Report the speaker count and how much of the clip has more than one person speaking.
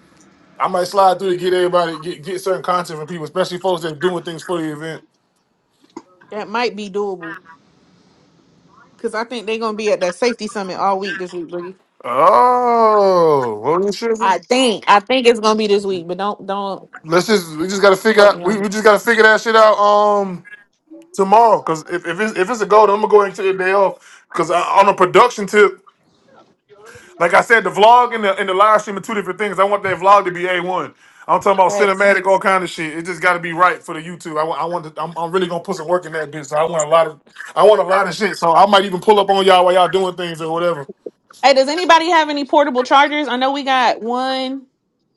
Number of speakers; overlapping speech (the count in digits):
2, about 2%